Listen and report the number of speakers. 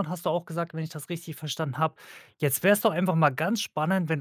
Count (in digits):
1